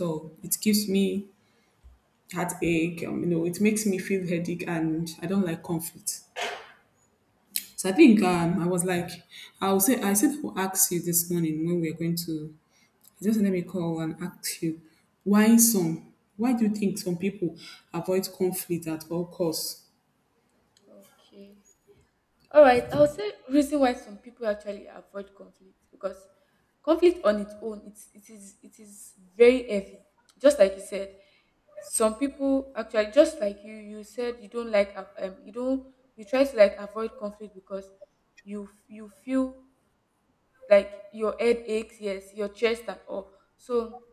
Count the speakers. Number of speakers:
2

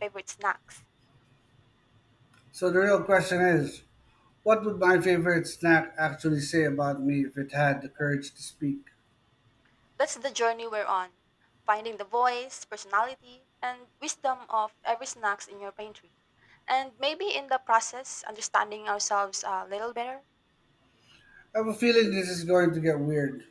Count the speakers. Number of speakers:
2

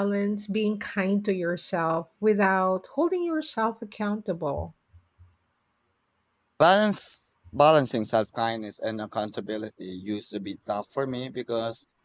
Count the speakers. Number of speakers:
2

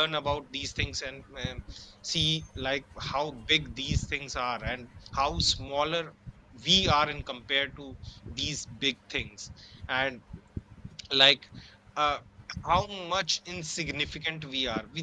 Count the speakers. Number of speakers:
1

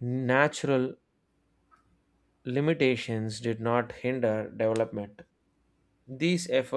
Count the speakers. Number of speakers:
1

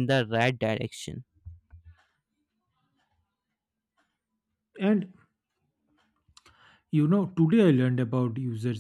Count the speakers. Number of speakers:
2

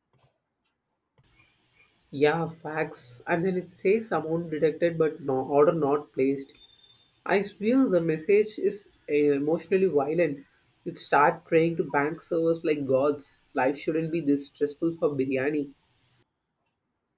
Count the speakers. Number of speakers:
1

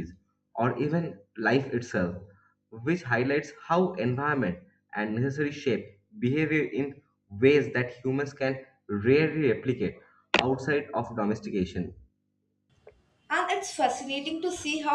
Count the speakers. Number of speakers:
2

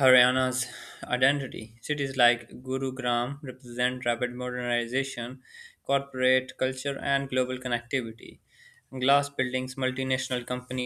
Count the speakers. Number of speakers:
1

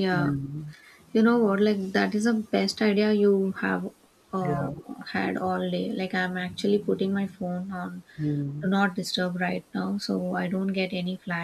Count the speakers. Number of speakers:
2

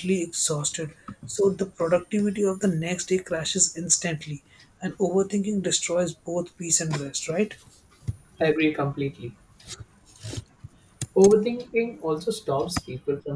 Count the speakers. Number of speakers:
2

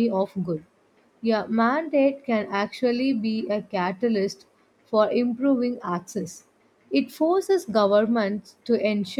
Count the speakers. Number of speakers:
1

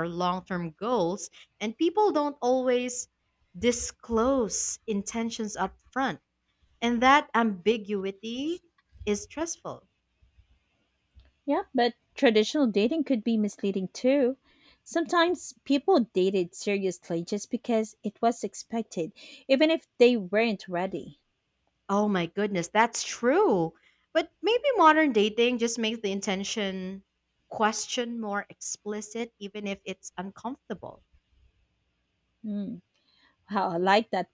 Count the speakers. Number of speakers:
2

